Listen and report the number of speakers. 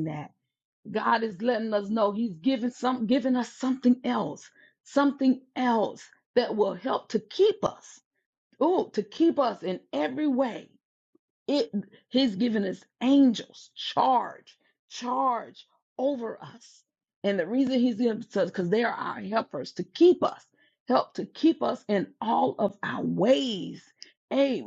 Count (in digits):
1